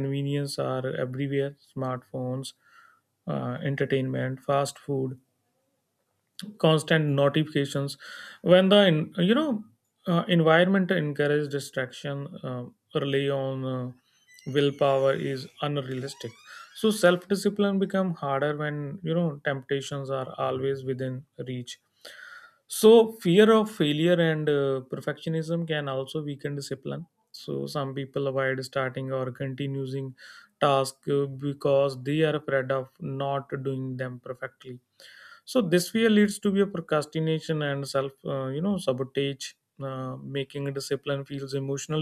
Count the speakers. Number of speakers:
1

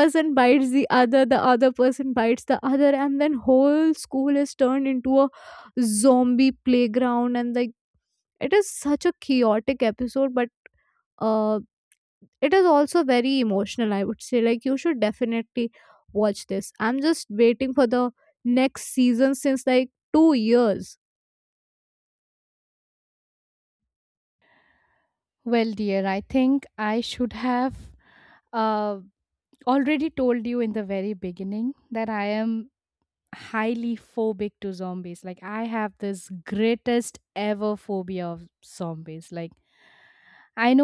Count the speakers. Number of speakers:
2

